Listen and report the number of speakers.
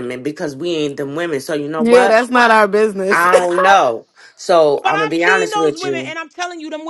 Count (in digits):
3